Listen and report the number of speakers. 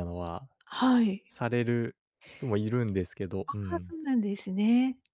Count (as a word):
two